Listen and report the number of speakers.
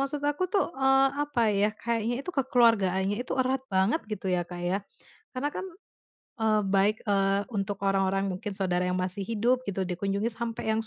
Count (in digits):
1